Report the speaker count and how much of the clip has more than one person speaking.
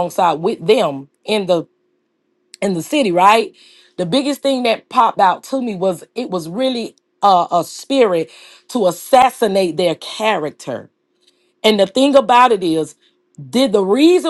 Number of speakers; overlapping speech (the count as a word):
one, no overlap